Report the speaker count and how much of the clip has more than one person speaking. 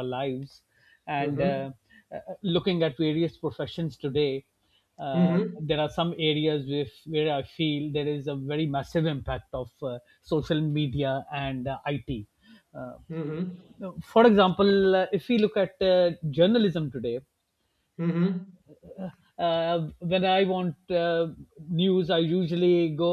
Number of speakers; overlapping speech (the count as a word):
two, about 4%